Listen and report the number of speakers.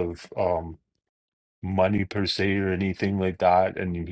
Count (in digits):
1